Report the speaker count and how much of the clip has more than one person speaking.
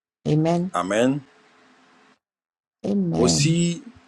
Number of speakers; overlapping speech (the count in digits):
2, about 9%